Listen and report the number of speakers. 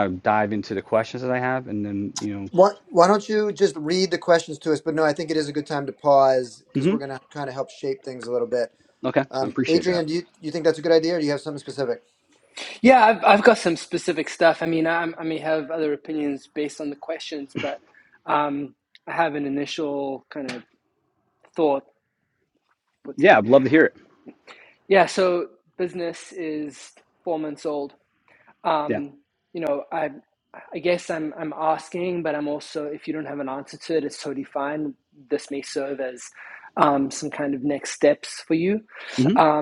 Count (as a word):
three